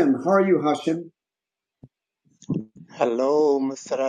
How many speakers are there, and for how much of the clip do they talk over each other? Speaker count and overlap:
two, no overlap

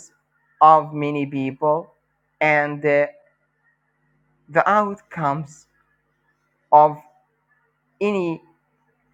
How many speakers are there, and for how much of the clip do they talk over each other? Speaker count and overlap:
one, no overlap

